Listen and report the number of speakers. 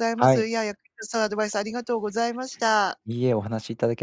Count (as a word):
two